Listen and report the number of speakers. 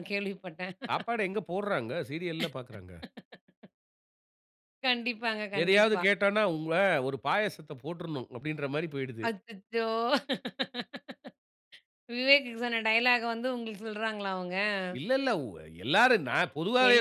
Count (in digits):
2